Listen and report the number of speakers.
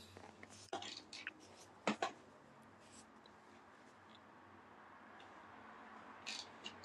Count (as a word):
zero